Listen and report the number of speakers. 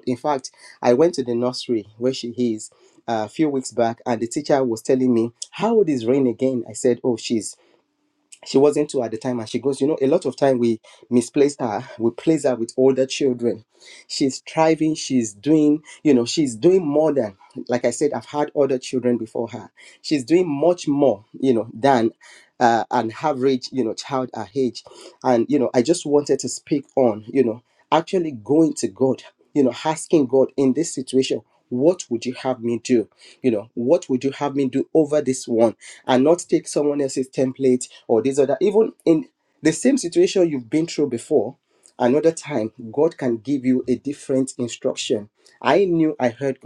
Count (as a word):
one